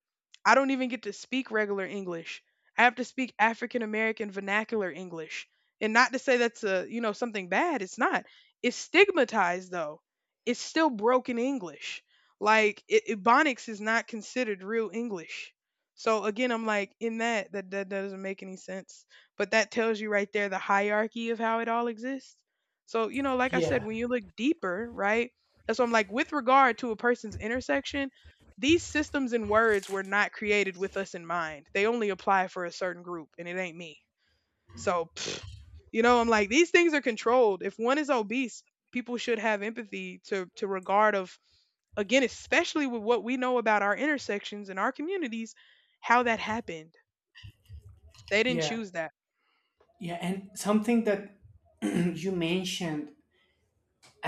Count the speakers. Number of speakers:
two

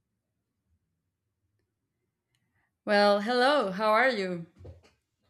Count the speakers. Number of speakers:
one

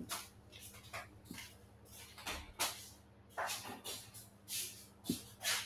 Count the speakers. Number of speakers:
zero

